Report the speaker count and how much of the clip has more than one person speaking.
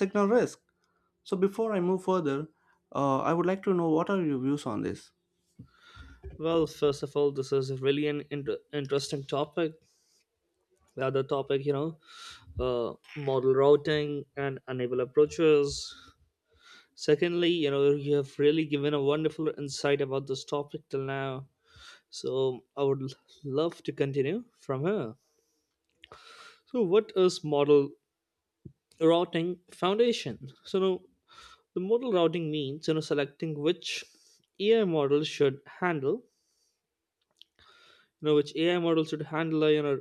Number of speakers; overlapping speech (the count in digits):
2, no overlap